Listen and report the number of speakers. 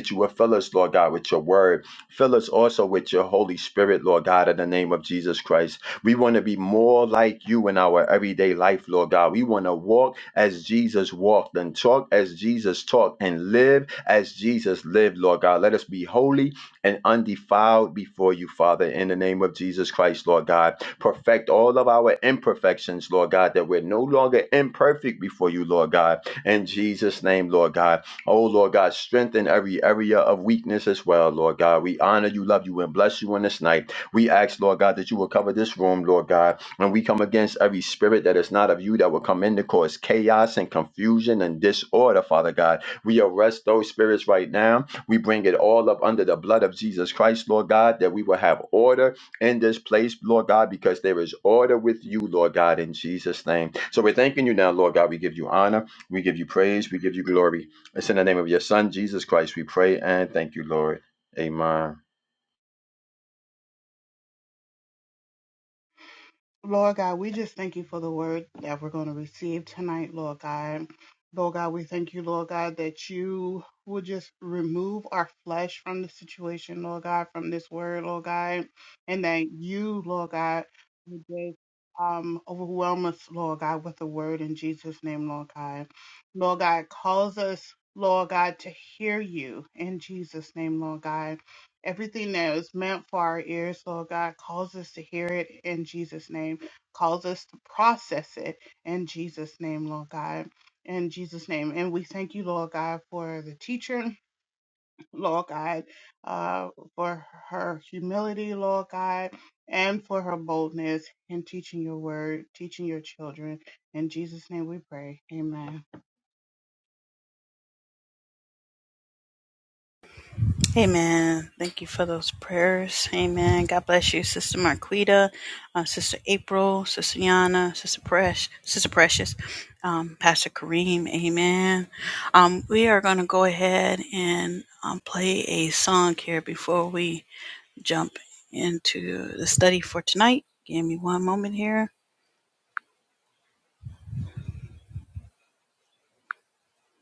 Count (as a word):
three